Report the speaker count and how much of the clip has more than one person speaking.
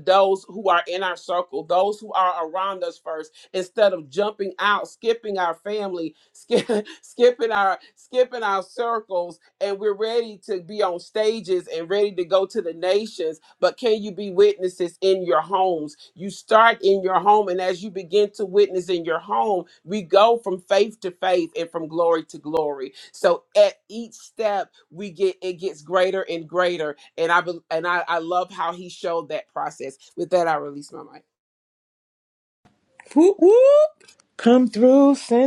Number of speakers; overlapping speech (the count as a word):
two, no overlap